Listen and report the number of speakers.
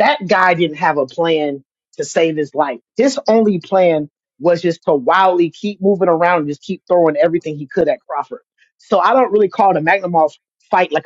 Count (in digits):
1